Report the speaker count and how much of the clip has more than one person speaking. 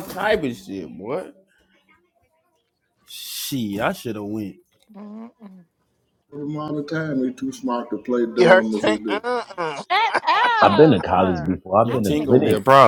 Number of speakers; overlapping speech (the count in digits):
5, about 15%